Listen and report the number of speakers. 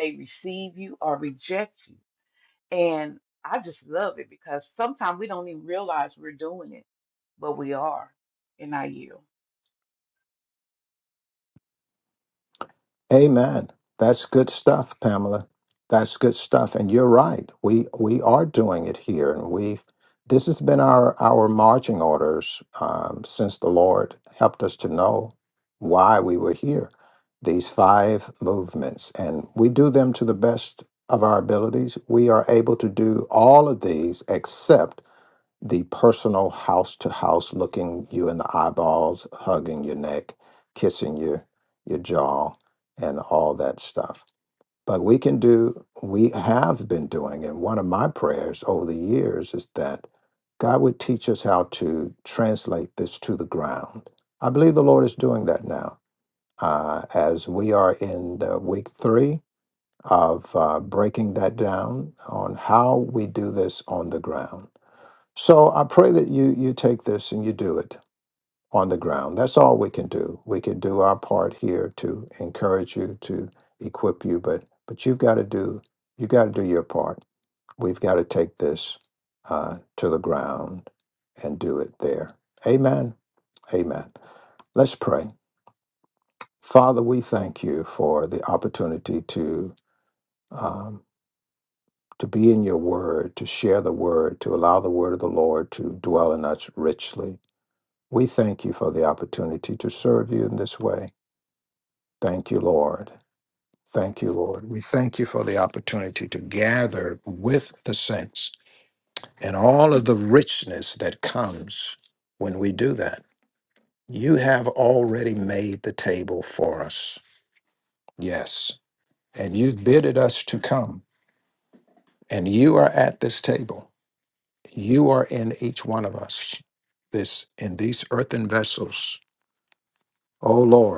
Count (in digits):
2